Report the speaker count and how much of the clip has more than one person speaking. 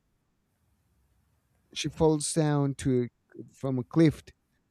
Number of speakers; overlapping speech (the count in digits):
1, no overlap